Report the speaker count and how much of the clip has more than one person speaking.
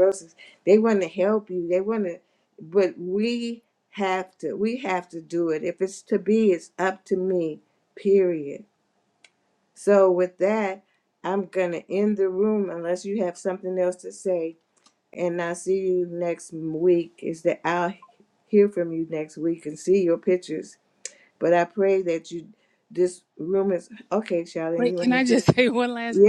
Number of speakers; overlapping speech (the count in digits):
2, about 3%